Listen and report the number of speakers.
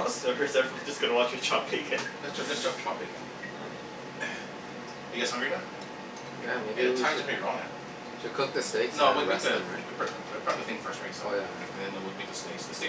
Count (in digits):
3